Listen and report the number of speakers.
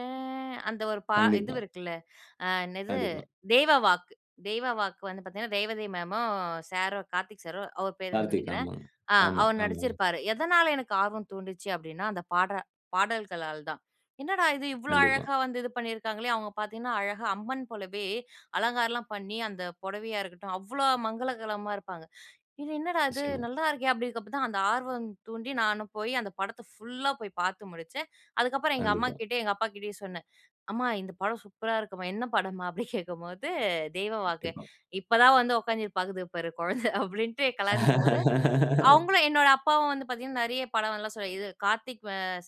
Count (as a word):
two